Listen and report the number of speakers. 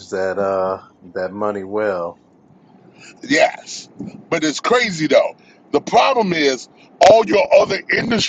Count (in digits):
2